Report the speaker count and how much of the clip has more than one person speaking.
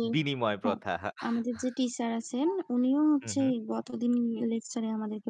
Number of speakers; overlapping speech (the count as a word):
two, about 9%